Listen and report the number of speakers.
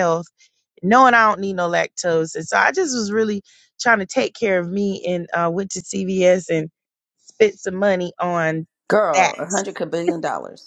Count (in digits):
2